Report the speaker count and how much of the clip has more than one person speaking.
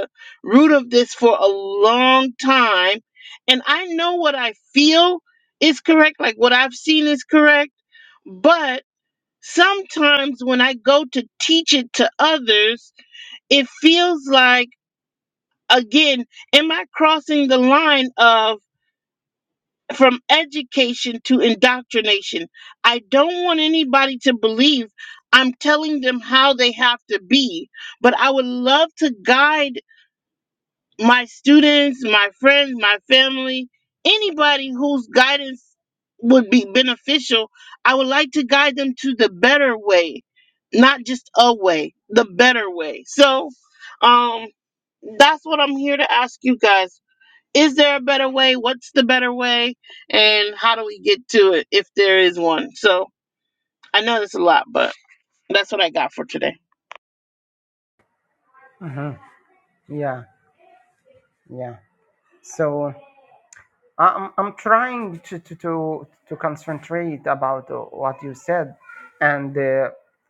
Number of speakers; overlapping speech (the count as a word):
two, no overlap